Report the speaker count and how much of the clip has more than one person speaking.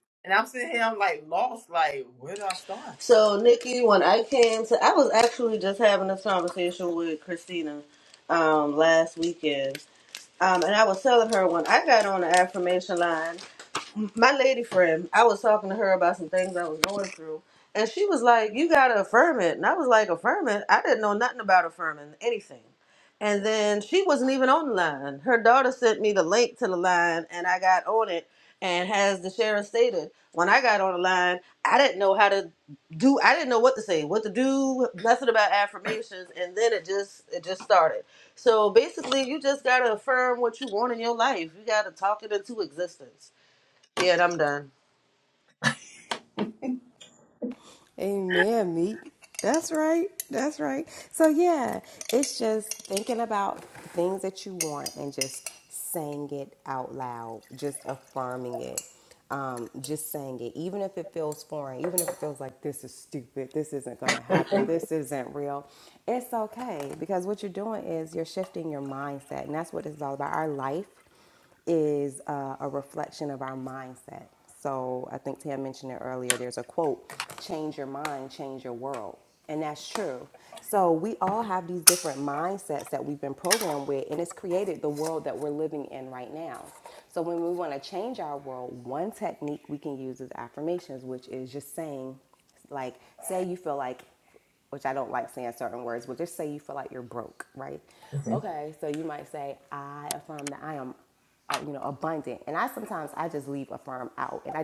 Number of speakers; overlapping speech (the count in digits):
3, under 1%